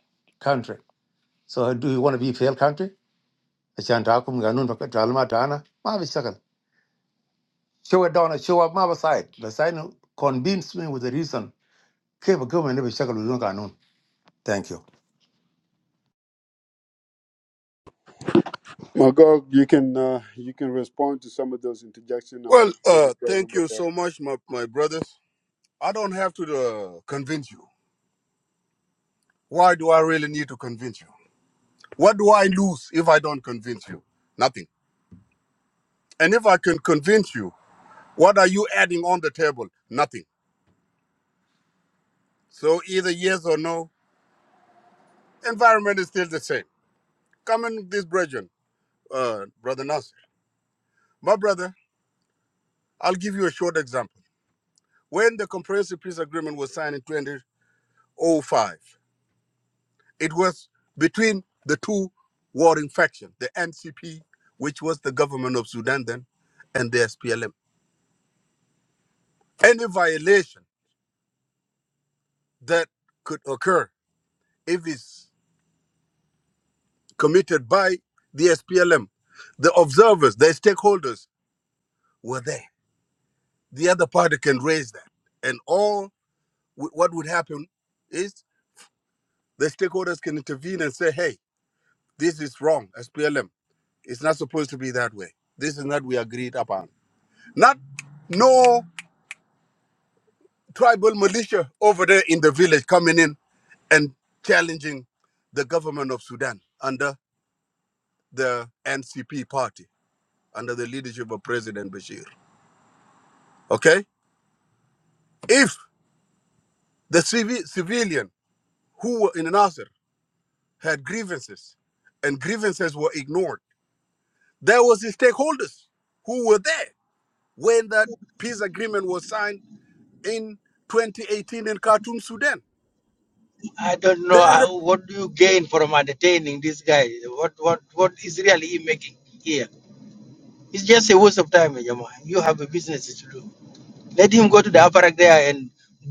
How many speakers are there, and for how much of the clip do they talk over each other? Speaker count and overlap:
4, about 1%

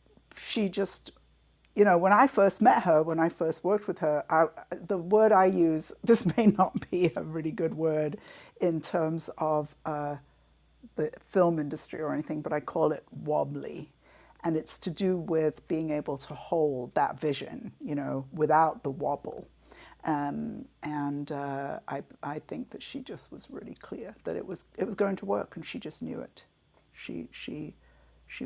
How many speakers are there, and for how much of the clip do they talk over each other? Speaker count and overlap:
1, no overlap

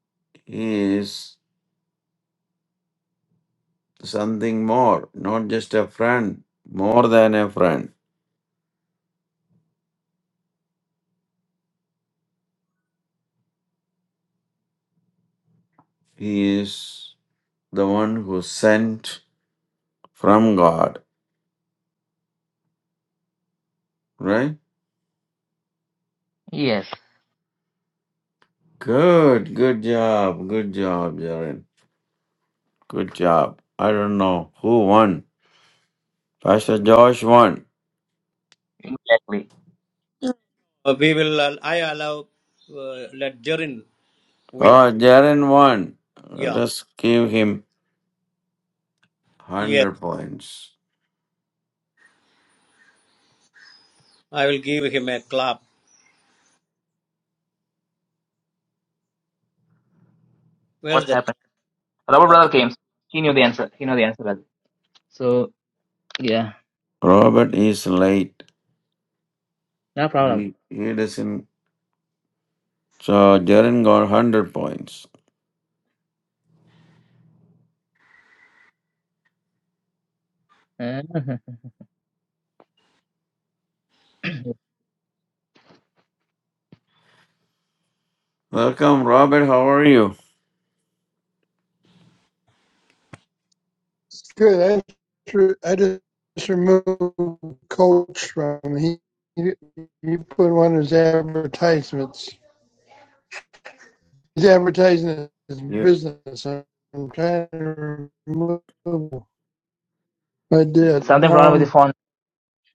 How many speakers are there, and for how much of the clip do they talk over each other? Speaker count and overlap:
4, about 2%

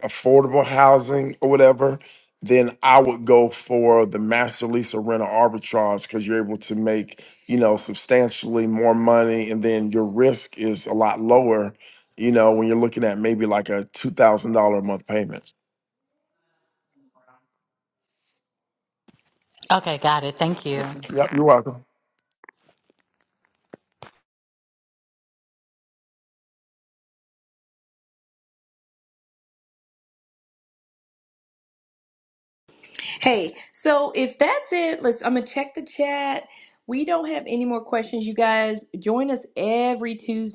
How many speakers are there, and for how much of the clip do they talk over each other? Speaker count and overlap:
3, no overlap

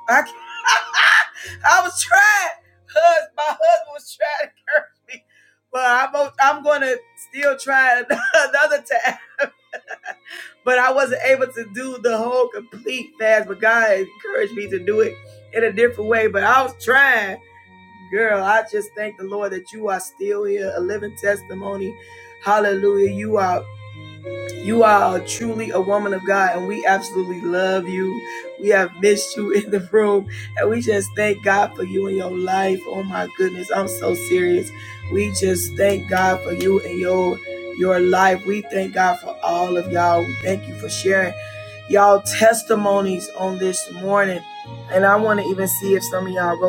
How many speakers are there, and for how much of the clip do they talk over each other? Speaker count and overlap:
1, no overlap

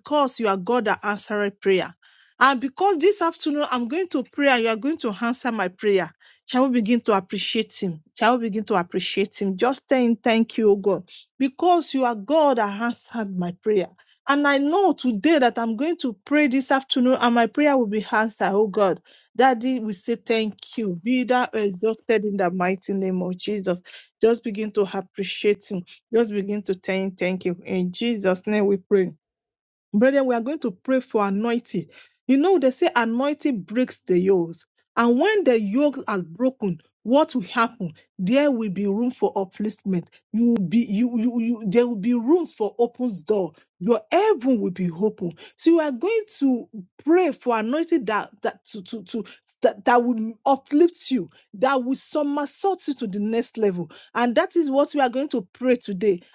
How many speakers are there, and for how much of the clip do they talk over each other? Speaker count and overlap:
1, no overlap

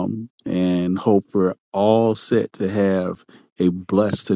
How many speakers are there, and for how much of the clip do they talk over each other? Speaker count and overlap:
1, no overlap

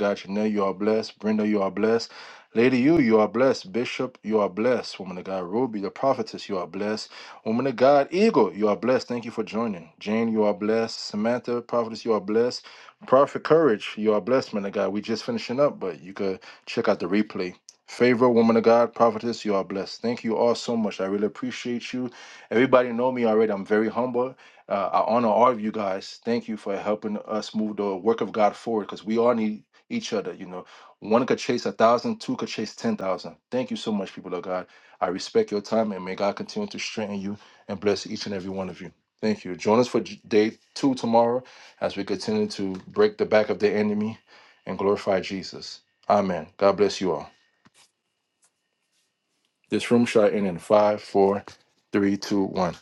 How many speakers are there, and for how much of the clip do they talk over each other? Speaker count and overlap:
1, no overlap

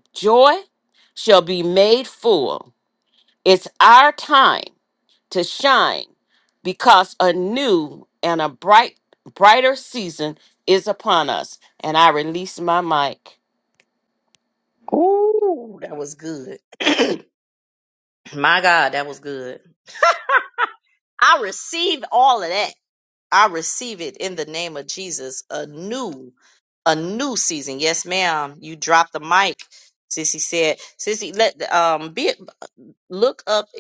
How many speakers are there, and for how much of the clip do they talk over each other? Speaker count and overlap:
2, no overlap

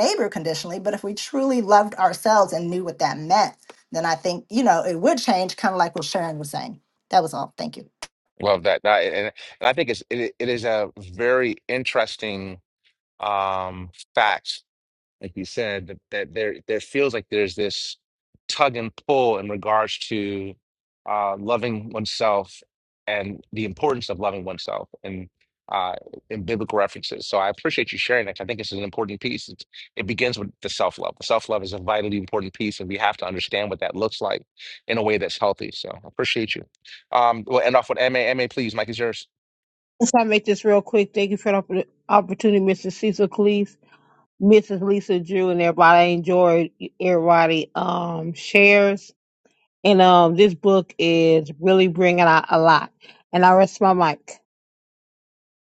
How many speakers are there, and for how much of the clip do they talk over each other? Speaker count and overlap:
3, no overlap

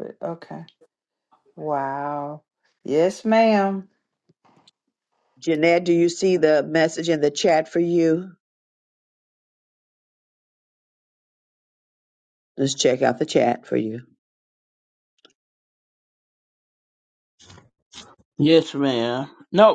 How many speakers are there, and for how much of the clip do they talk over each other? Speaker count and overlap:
3, no overlap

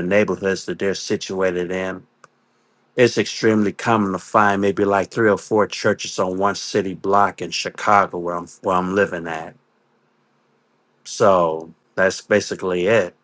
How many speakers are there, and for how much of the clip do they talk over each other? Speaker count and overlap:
1, no overlap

